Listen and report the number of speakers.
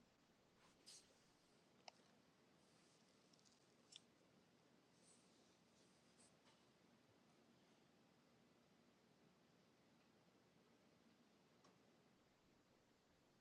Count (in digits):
0